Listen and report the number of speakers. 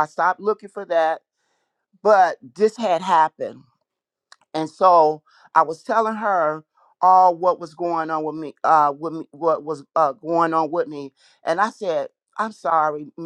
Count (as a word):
one